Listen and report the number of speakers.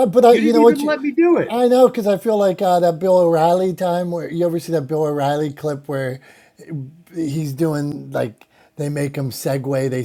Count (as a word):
two